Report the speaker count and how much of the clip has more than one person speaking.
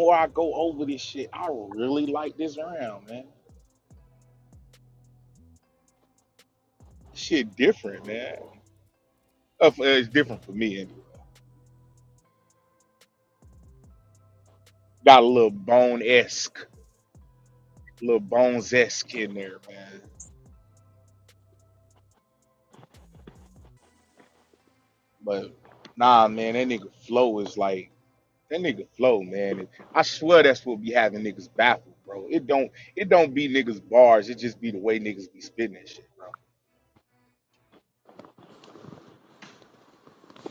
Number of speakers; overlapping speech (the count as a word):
one, no overlap